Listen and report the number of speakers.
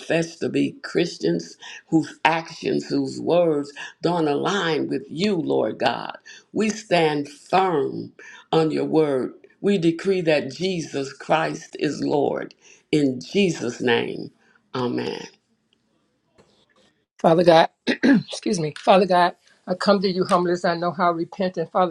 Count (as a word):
two